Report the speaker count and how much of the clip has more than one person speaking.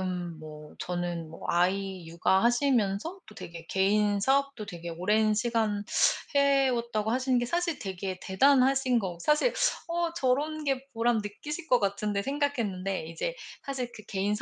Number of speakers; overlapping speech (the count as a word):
one, no overlap